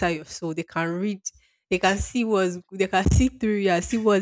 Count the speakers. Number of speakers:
one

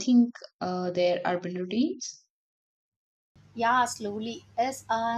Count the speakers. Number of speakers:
two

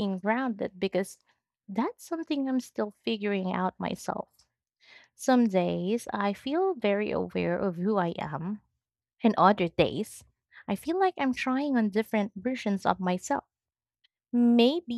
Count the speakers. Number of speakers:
one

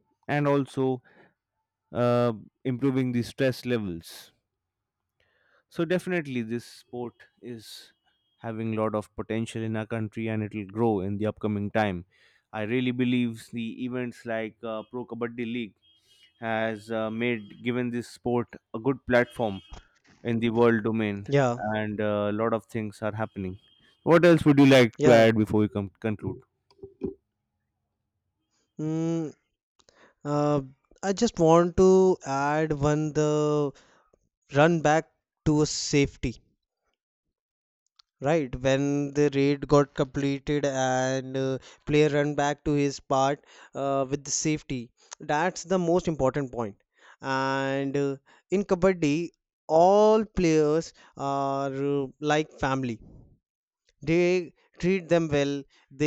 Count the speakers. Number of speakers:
two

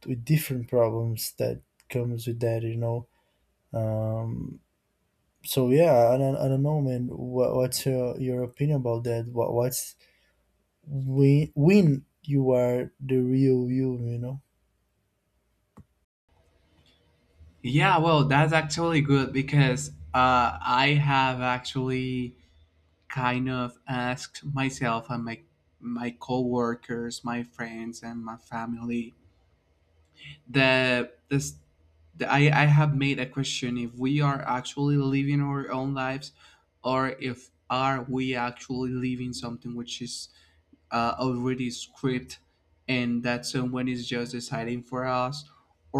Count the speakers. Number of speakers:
two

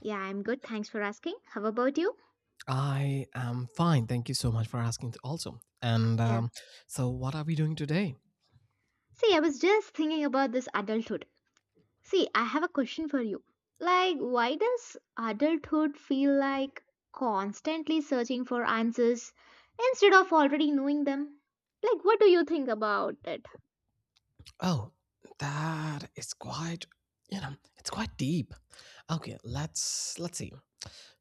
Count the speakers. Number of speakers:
two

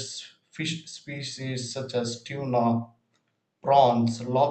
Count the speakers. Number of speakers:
one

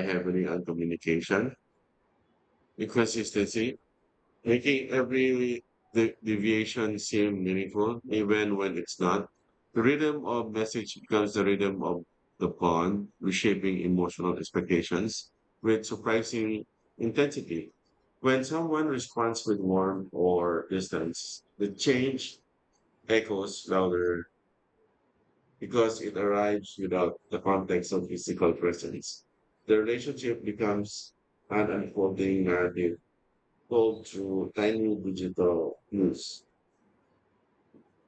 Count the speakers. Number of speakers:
one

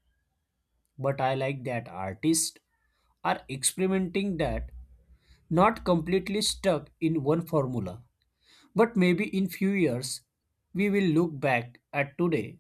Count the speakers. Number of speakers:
one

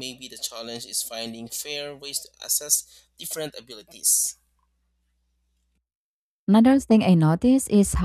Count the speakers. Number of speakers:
two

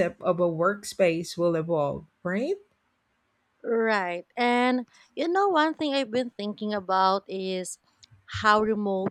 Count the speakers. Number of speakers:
two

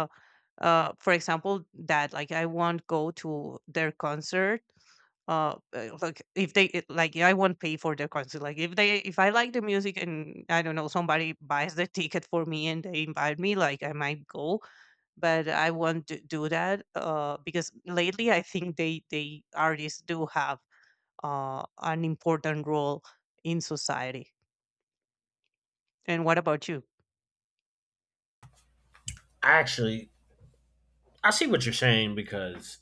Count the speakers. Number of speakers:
two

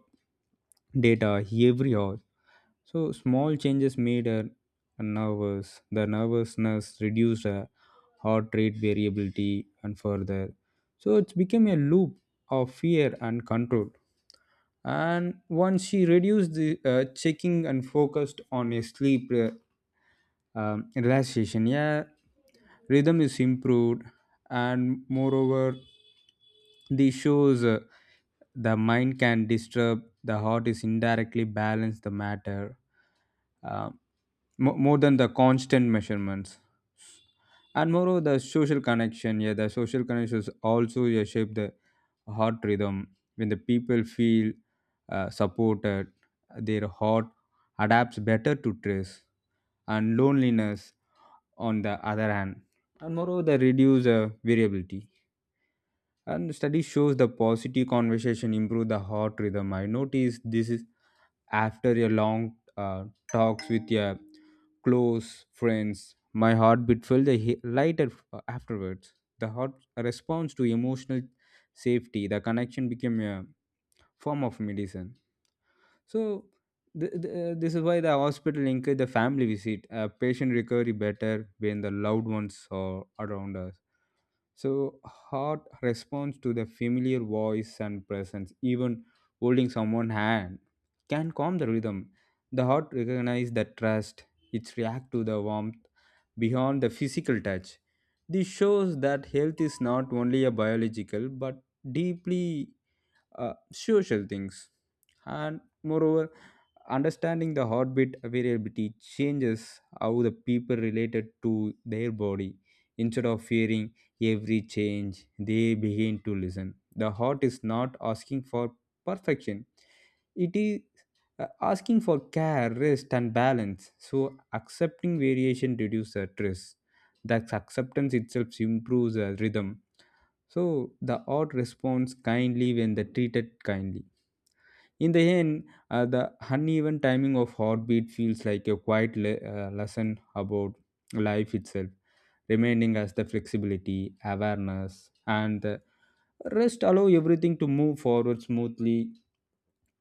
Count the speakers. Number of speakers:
one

